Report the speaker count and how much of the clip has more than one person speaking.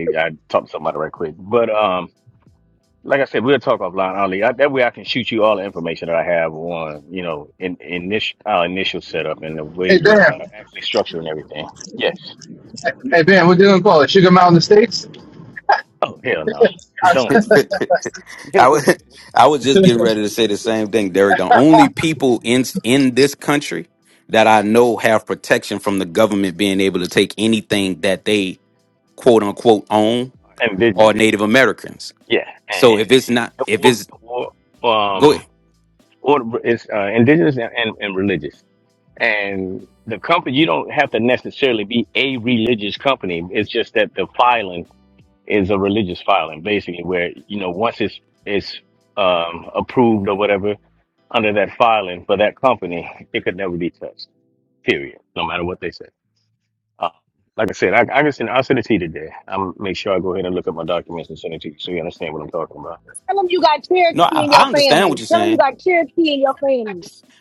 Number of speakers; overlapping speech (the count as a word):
four, about 3%